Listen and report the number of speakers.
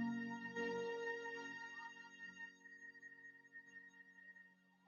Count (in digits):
0